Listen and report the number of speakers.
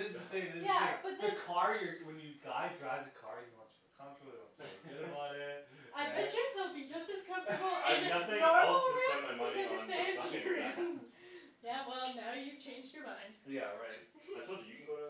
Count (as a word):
three